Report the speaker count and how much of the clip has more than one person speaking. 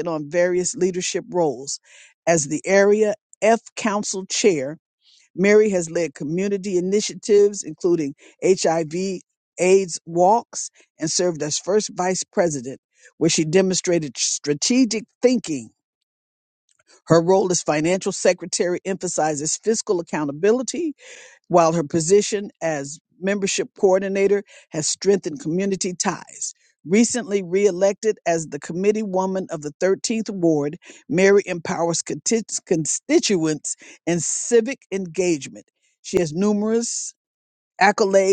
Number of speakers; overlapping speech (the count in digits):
1, no overlap